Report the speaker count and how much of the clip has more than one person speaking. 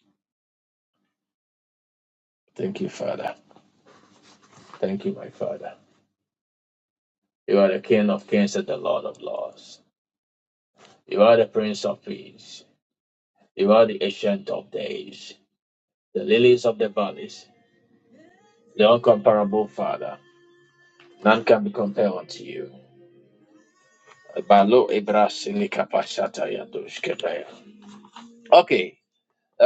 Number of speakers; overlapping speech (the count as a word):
one, no overlap